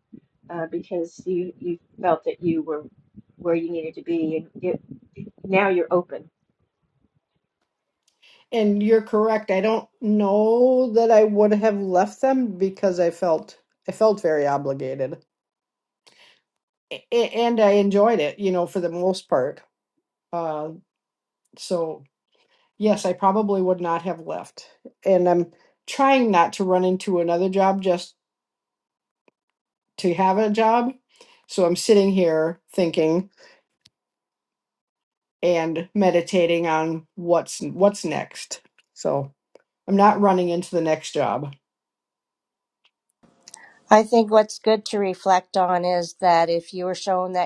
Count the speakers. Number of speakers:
three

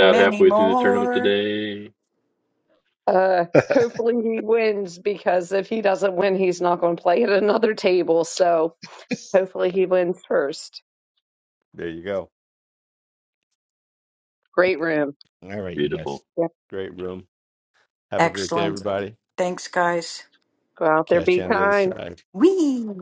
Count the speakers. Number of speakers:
four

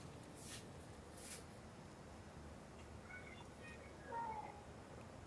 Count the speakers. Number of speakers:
zero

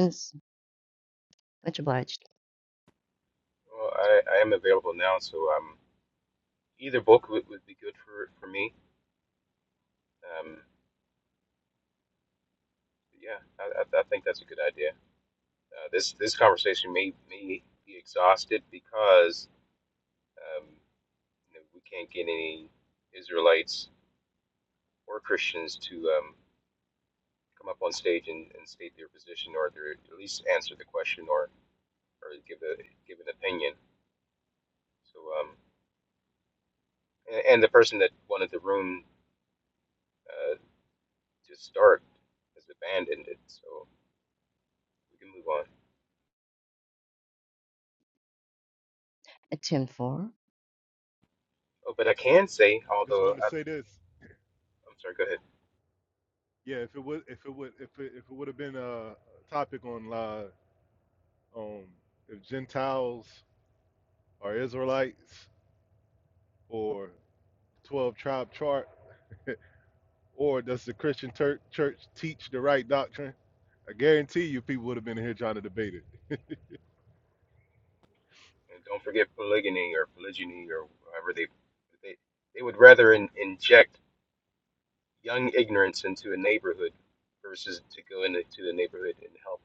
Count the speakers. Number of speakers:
three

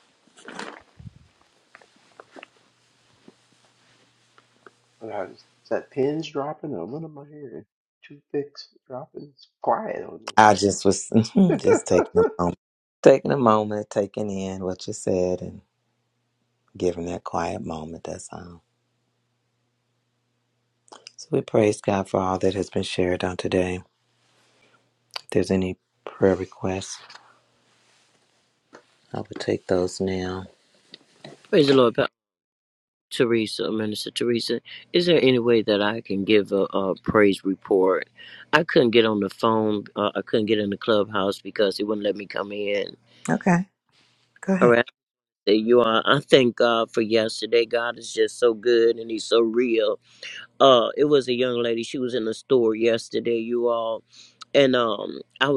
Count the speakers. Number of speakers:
three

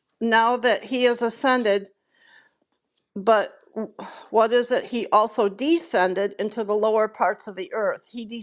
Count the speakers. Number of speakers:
one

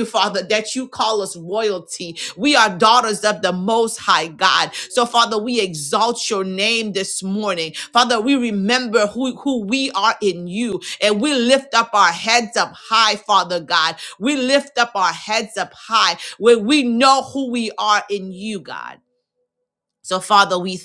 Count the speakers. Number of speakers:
one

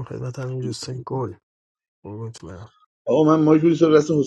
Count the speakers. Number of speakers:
two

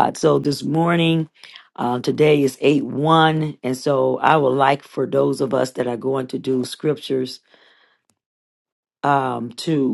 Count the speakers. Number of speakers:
one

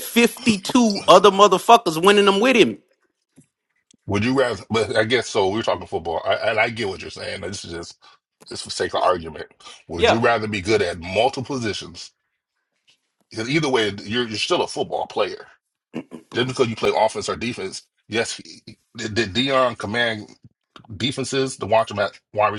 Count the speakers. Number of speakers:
two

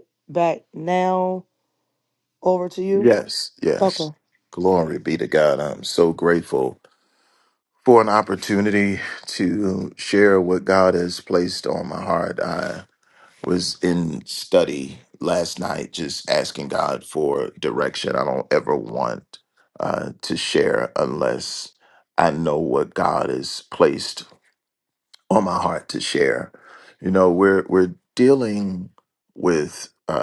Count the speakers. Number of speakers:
two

